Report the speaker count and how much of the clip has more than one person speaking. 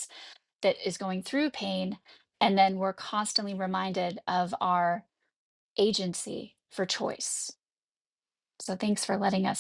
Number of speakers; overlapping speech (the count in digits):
1, no overlap